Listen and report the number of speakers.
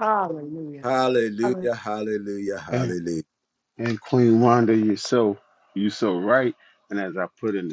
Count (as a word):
three